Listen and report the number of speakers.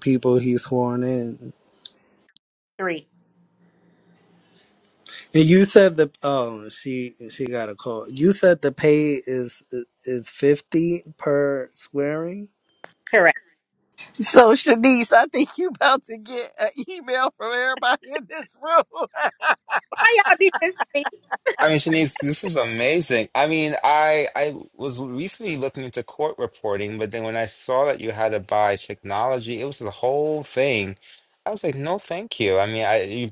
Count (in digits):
4